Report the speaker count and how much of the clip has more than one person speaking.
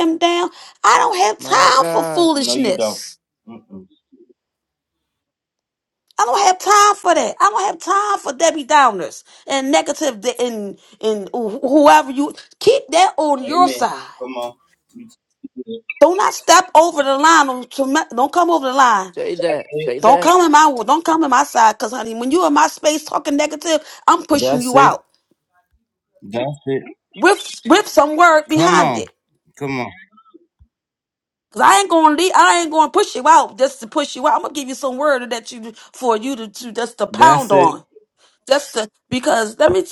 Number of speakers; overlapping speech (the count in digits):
3, about 10%